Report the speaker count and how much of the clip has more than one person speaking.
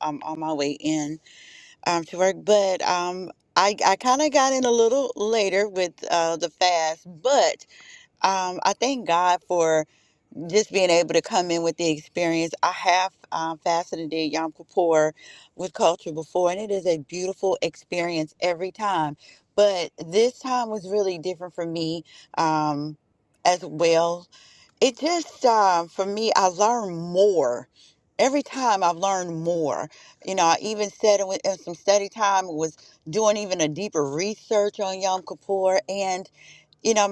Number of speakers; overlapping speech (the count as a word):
one, no overlap